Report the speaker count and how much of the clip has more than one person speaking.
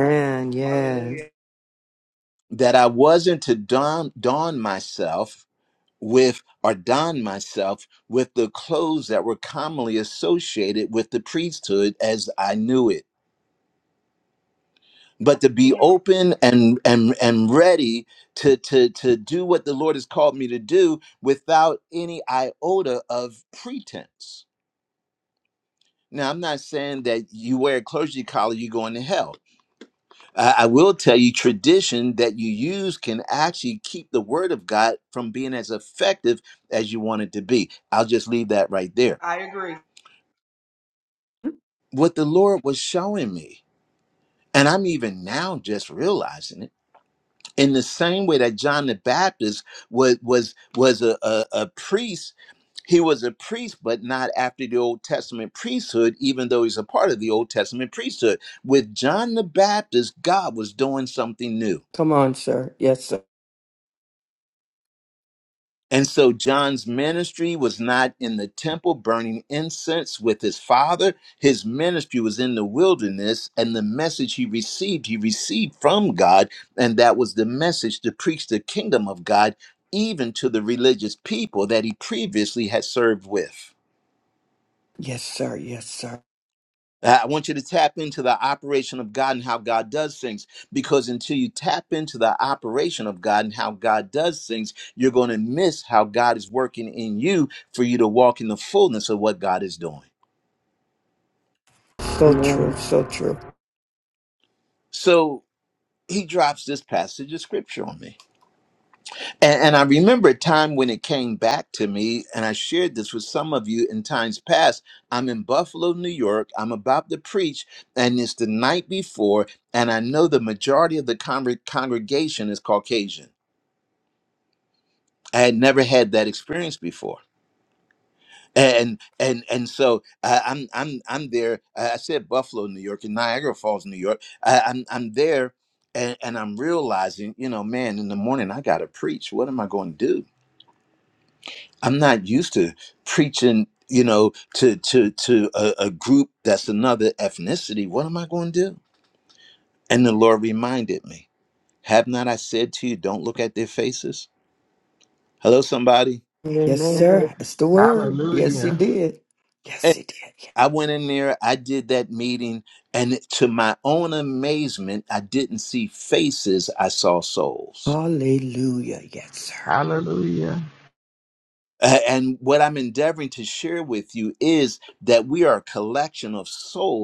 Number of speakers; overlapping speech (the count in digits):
5, about 2%